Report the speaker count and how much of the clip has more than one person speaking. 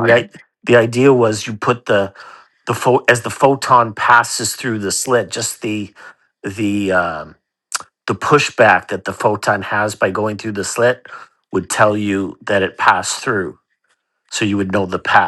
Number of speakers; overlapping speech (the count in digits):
1, no overlap